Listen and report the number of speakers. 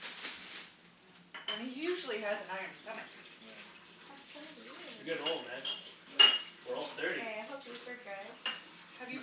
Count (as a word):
four